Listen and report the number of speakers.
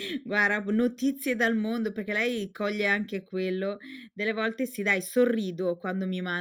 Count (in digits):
1